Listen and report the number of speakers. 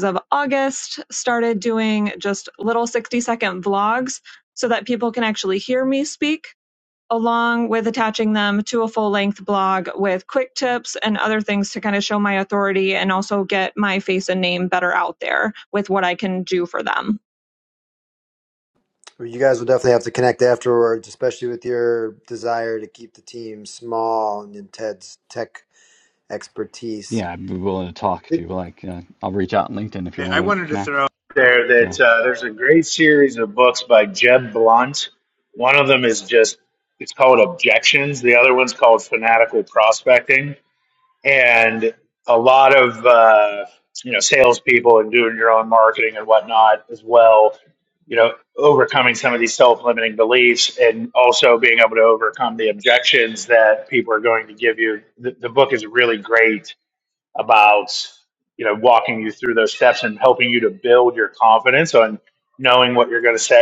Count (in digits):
4